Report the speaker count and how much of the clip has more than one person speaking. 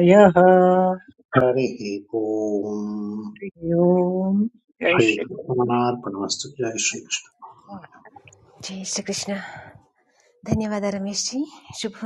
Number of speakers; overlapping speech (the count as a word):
three, about 1%